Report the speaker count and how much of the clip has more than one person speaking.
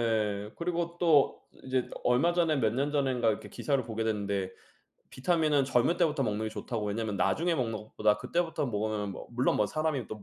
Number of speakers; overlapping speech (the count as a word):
one, no overlap